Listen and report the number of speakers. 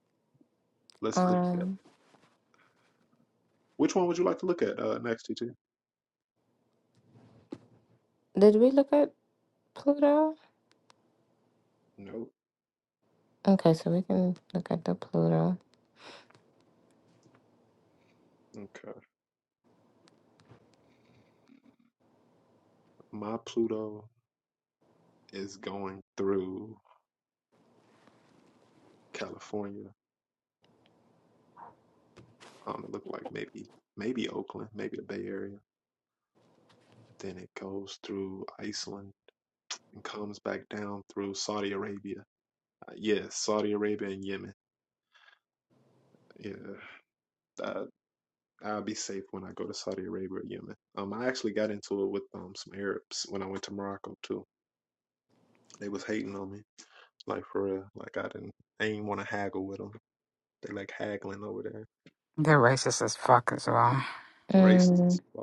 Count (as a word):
three